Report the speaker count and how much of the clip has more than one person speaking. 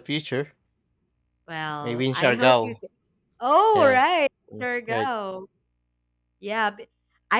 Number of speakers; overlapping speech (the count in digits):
2, about 22%